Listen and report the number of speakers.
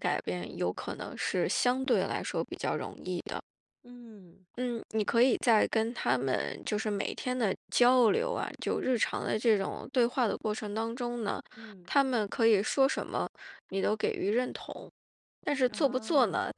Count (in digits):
2